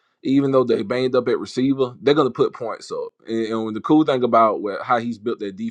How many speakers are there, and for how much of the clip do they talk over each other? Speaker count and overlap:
one, no overlap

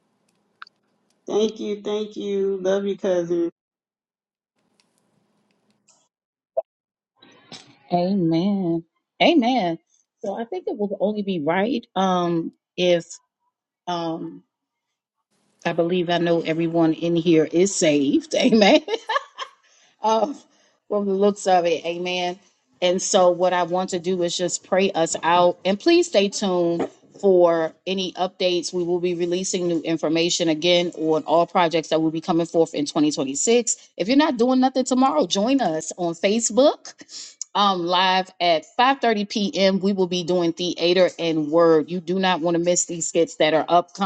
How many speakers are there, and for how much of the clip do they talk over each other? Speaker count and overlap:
two, no overlap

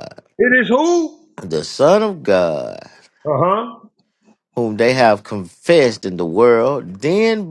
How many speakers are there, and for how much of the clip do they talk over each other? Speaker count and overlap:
two, no overlap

